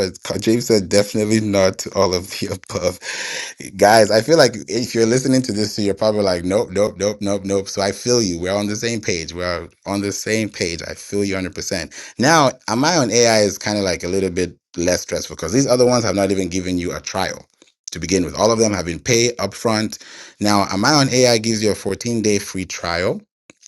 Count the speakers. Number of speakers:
1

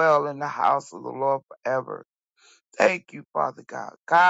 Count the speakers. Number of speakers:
1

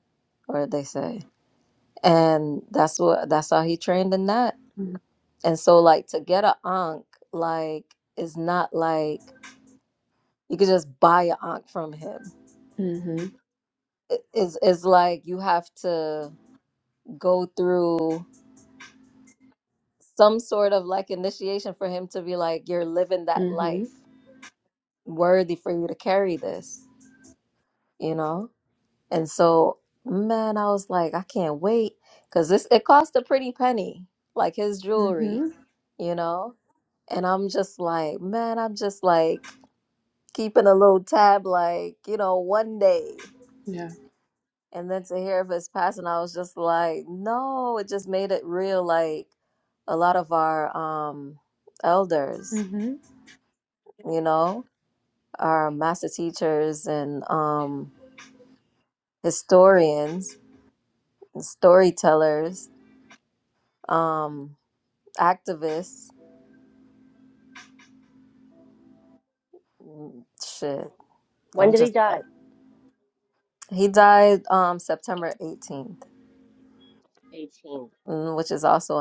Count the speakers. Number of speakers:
3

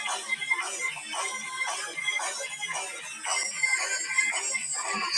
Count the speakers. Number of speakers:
0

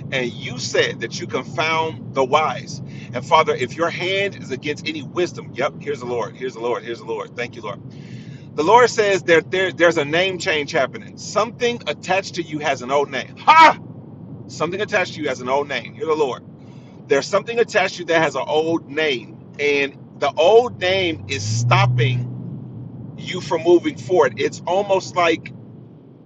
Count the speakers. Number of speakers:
1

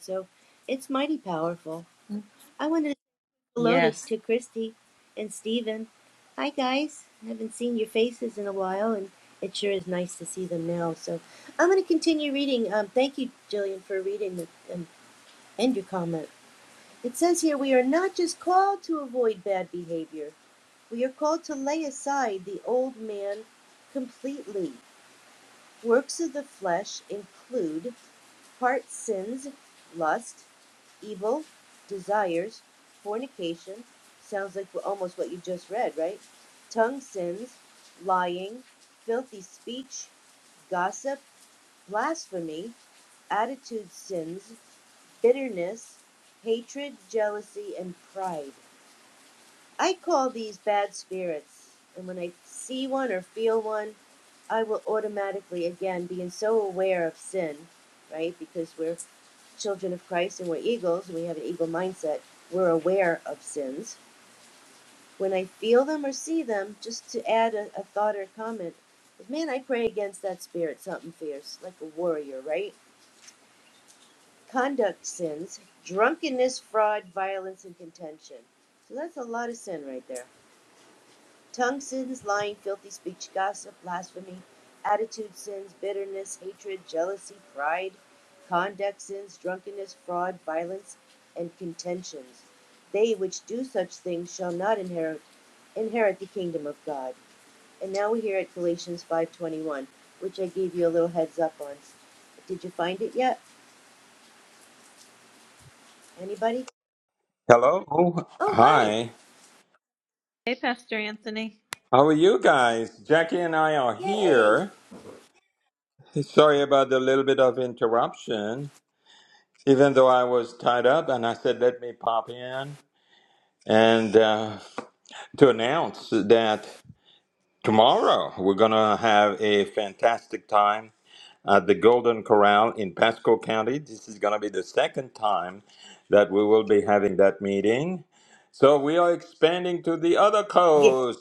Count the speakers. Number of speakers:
3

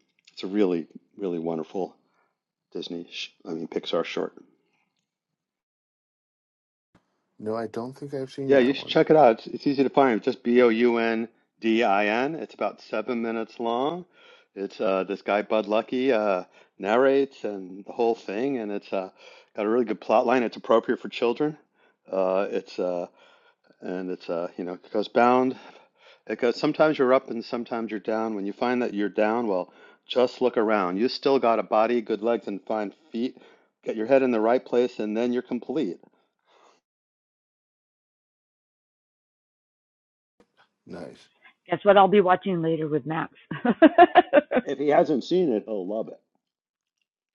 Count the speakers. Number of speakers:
3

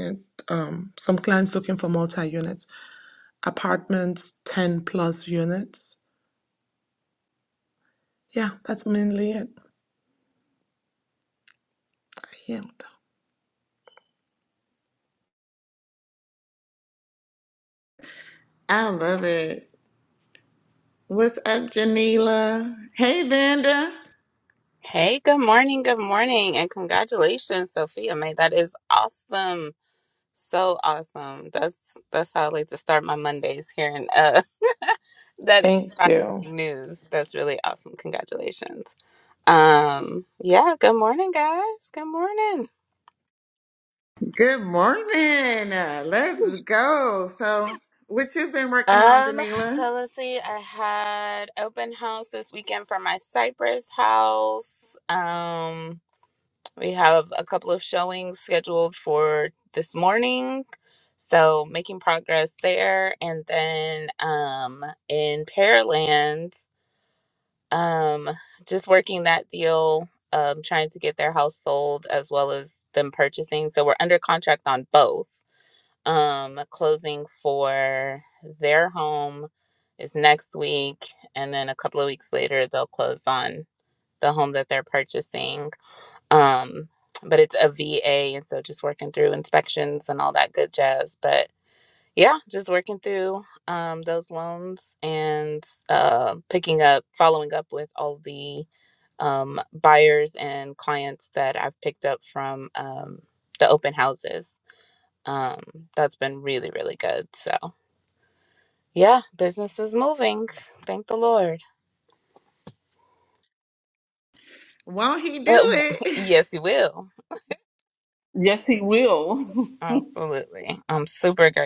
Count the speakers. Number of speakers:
4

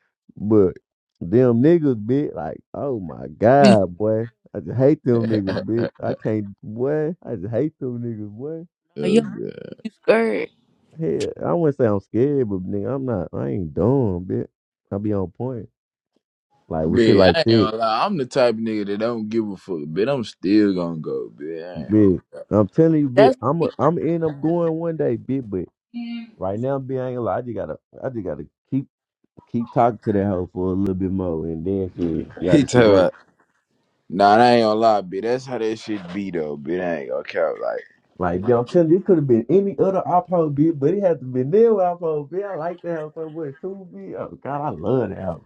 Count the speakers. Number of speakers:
3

